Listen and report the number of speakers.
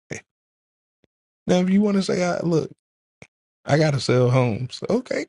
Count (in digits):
1